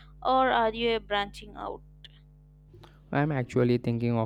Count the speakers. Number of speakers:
2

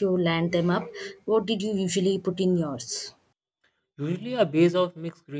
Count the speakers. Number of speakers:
2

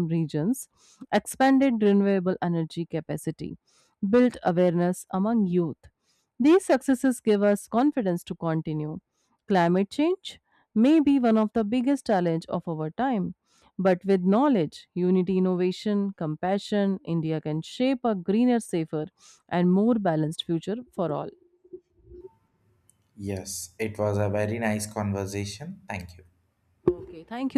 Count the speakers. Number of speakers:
2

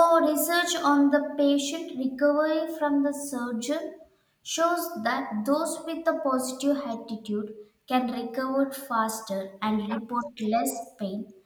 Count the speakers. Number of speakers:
1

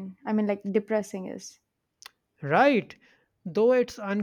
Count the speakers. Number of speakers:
2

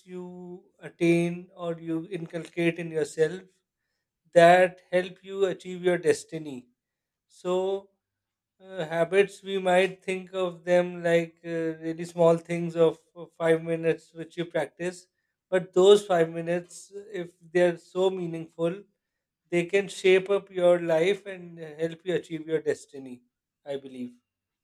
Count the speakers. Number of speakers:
1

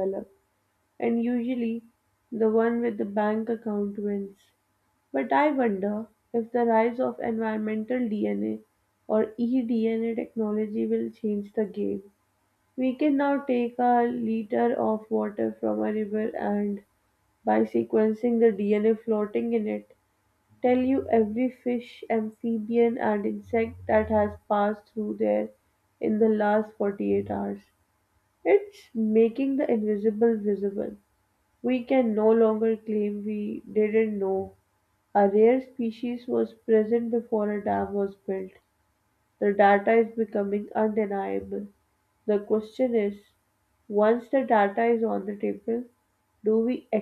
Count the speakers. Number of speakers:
1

